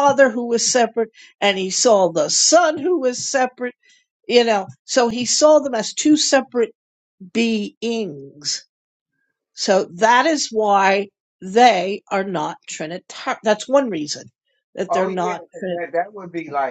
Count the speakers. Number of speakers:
2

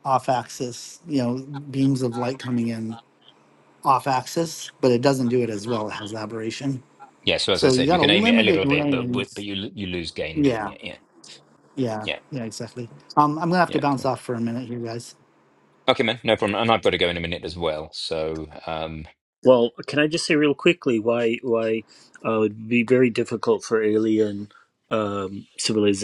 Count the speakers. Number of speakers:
3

